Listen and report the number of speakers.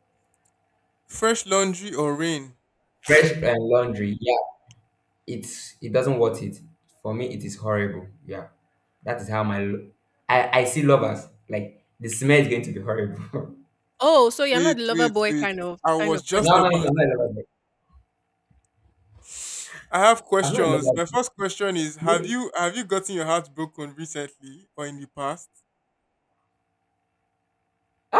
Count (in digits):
3